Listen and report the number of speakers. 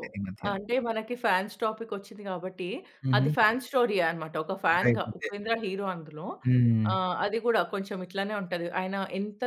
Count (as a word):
two